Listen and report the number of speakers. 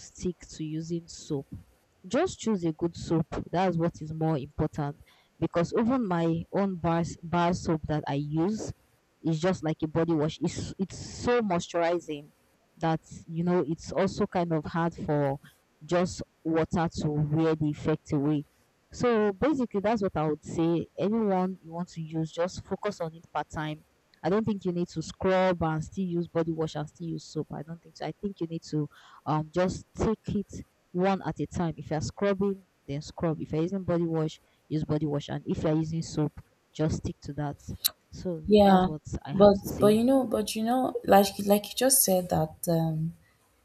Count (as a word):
two